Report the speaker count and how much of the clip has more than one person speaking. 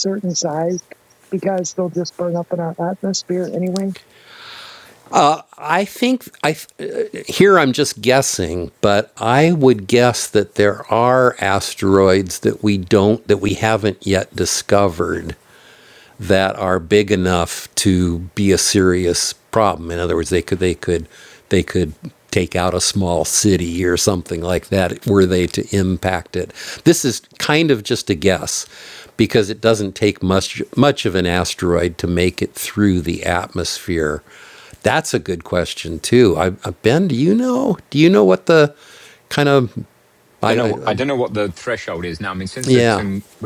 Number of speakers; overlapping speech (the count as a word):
three, about 2%